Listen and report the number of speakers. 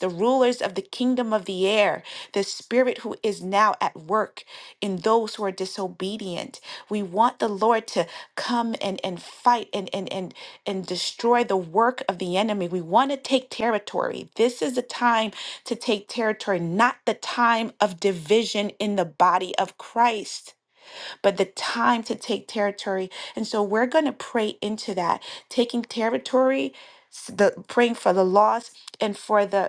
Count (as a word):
one